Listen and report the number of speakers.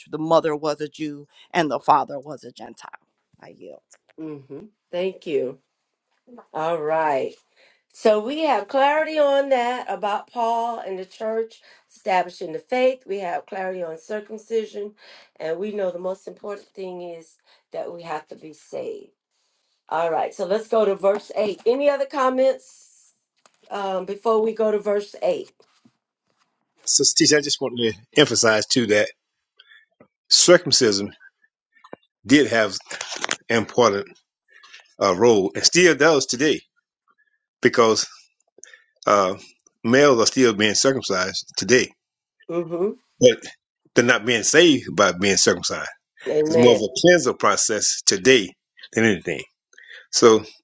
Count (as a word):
three